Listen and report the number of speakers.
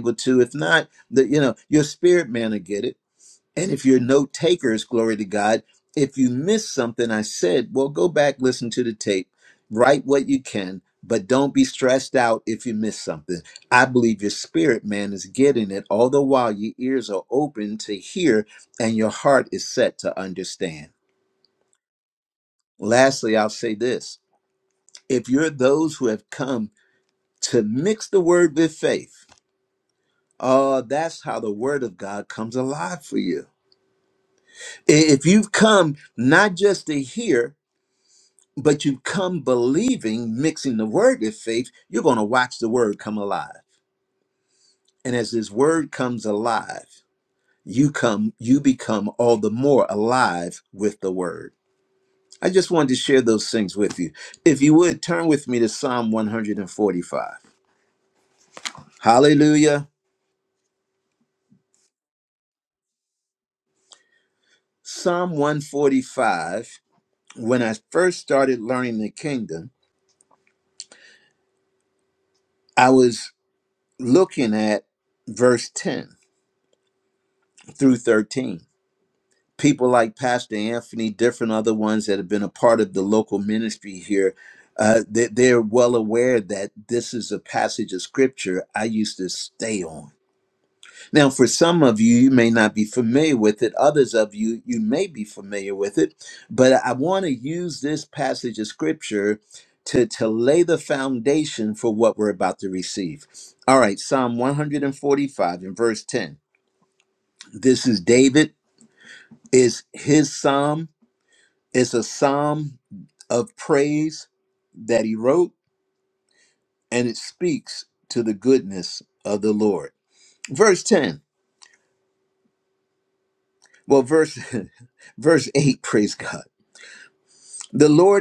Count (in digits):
1